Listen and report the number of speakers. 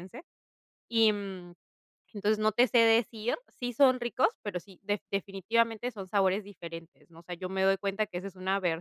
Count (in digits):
1